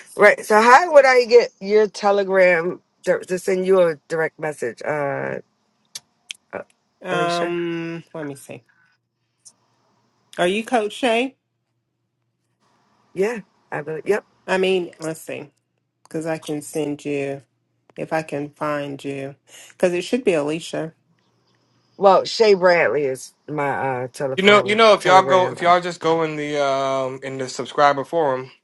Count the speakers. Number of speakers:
3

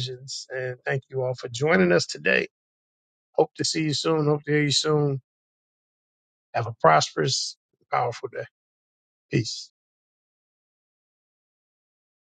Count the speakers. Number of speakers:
1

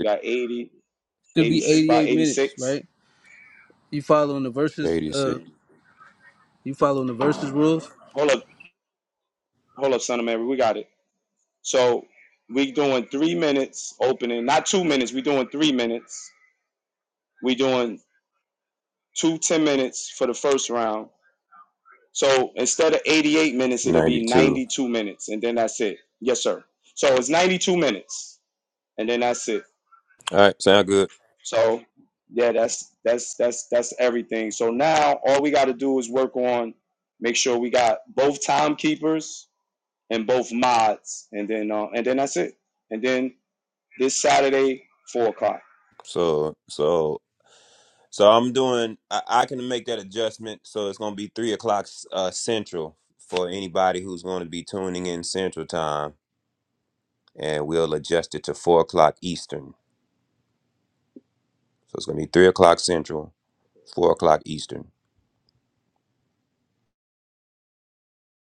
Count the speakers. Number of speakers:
3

